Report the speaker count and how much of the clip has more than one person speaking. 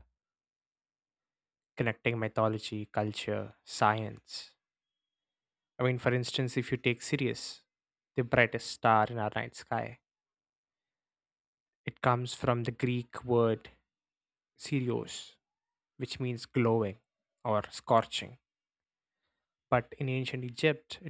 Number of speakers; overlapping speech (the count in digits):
1, no overlap